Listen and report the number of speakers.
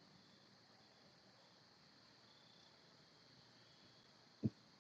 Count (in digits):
0